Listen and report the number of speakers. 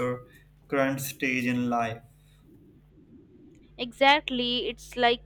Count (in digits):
2